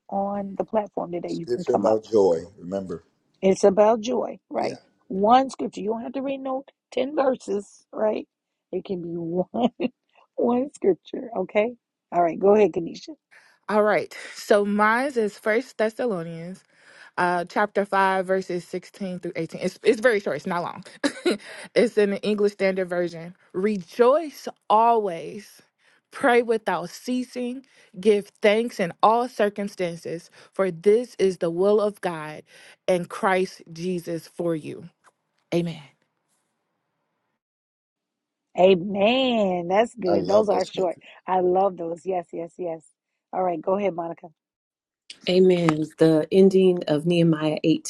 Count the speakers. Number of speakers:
4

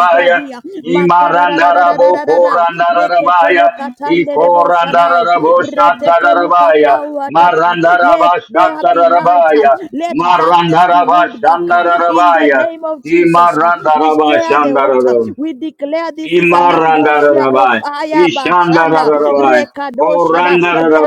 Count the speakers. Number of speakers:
2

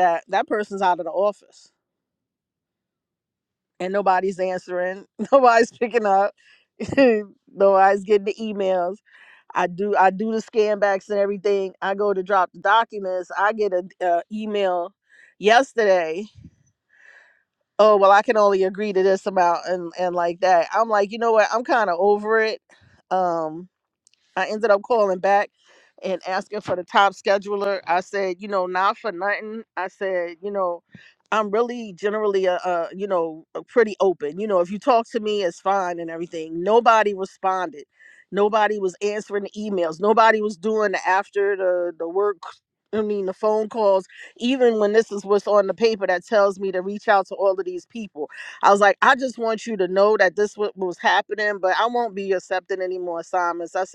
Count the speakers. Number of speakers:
1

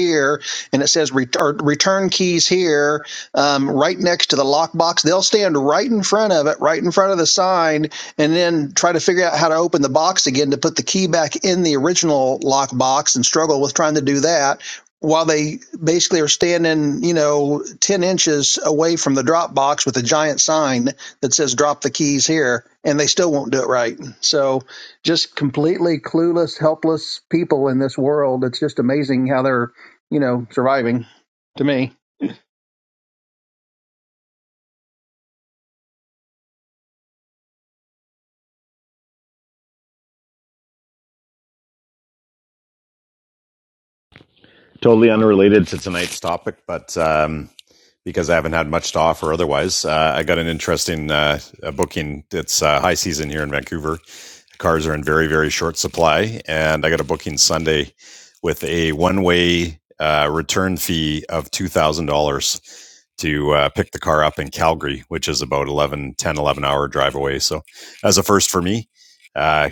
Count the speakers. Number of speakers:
2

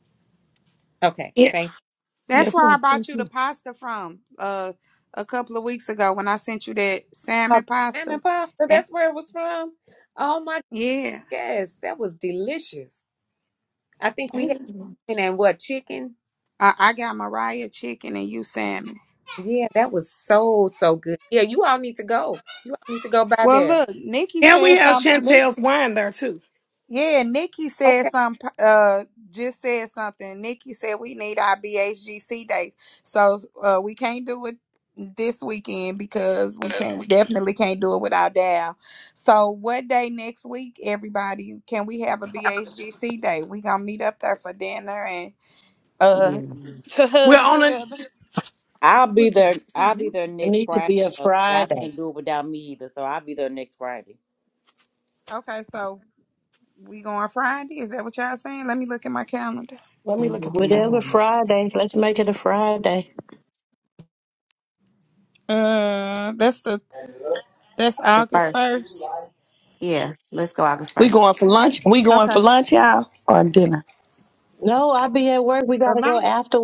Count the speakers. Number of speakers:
7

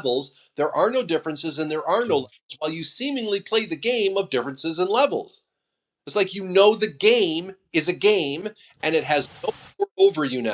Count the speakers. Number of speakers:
1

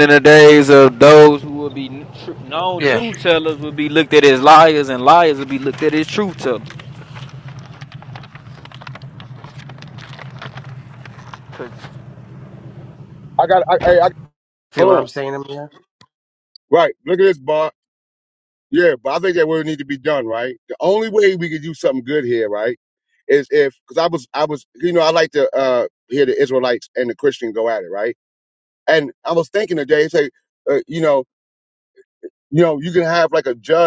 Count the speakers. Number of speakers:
3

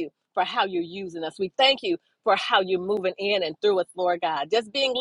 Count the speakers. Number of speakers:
1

